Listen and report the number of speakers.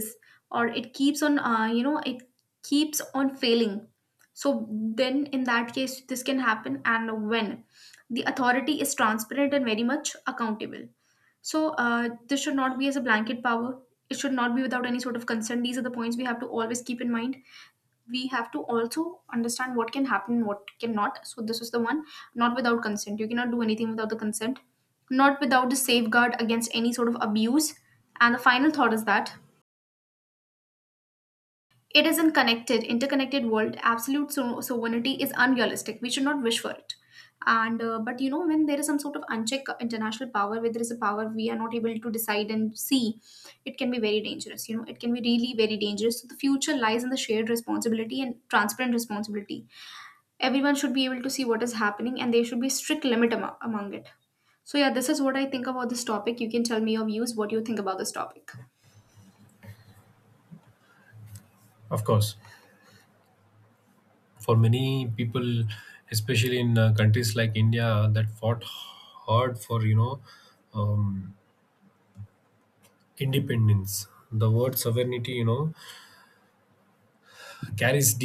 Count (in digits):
2